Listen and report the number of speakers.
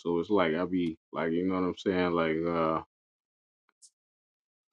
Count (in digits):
1